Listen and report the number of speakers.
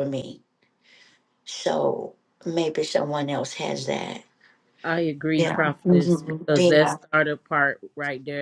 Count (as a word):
two